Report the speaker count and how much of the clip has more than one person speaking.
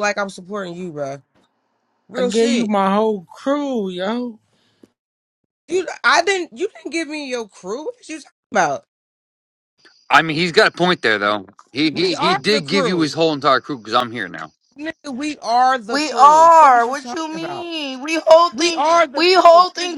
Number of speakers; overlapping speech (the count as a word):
four, about 23%